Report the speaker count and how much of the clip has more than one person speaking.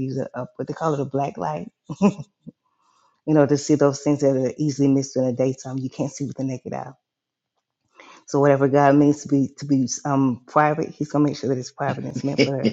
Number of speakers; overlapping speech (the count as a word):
one, no overlap